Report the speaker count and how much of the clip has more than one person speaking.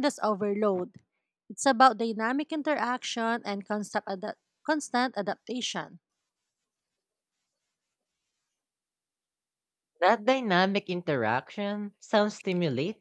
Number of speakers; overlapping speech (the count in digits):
2, no overlap